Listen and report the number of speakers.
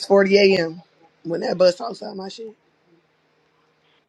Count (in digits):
1